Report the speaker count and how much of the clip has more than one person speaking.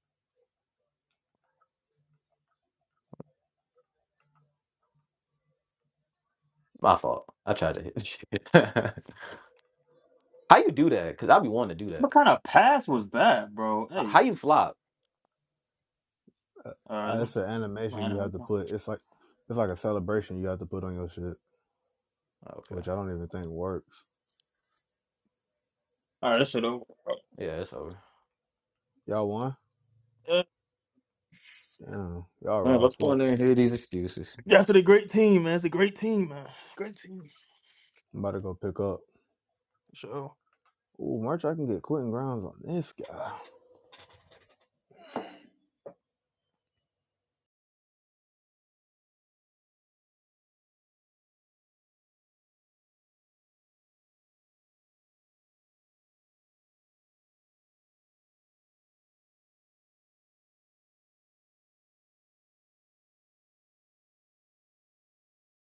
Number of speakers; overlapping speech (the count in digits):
3, about 3%